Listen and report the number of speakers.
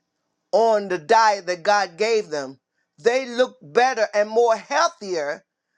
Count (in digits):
1